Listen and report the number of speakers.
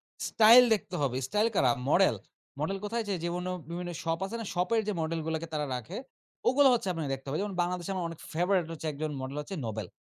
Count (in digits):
1